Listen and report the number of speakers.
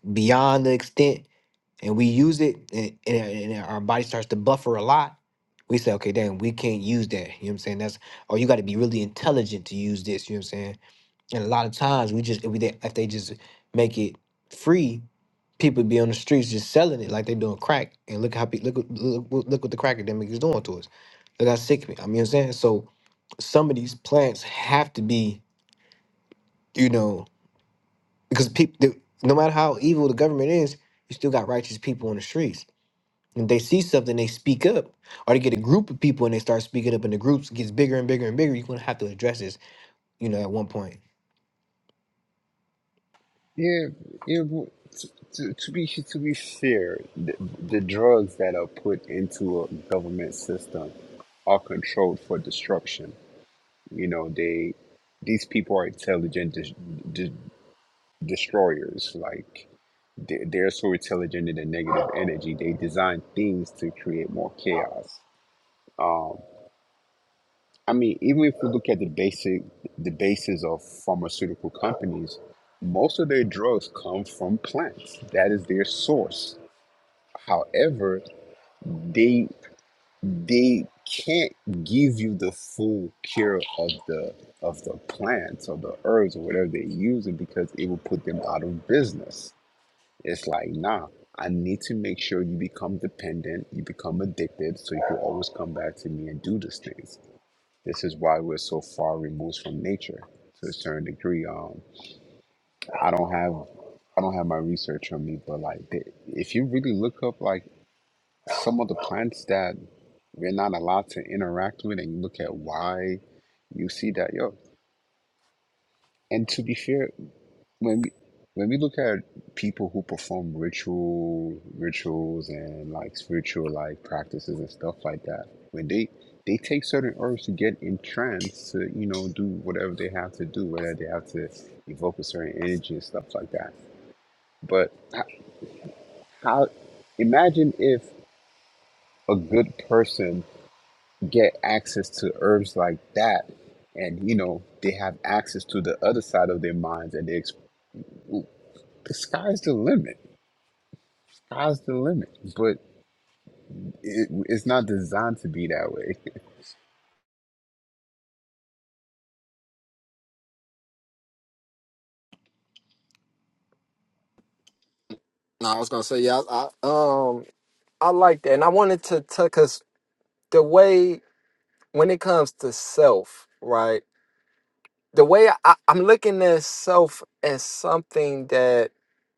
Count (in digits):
3